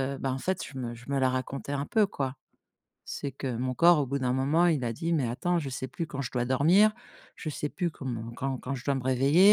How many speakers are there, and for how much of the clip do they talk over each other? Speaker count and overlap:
1, no overlap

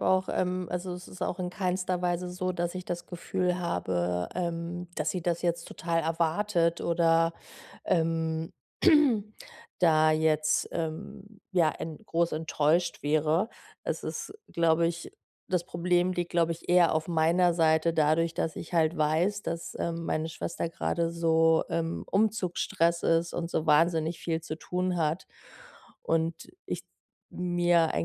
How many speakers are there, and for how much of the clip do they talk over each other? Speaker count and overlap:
1, no overlap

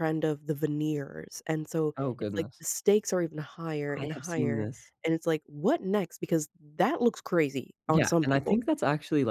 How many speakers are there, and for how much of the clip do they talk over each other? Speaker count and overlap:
2, about 21%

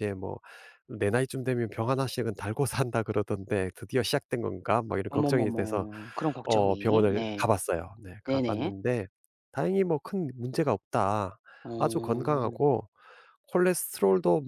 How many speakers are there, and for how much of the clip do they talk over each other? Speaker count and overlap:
2, about 21%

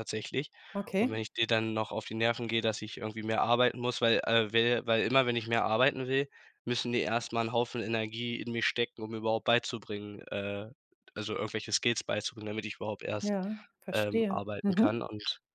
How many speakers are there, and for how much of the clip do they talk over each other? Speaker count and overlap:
2, about 8%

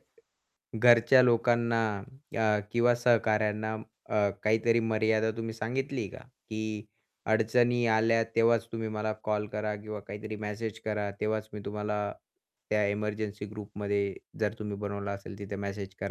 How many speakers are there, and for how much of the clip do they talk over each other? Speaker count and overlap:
1, no overlap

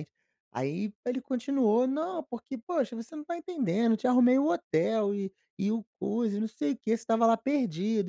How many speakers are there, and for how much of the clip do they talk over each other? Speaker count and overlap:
1, no overlap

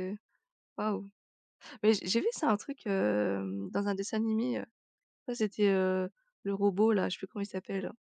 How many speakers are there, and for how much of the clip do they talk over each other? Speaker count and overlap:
1, no overlap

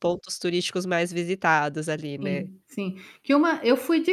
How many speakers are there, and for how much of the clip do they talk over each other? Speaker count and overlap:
2, about 6%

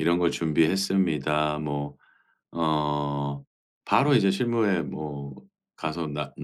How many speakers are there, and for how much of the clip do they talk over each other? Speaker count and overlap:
1, no overlap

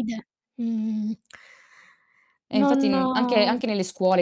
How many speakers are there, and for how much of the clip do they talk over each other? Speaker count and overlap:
2, about 25%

